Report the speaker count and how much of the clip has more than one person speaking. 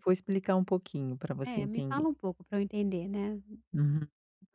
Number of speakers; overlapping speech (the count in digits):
2, about 13%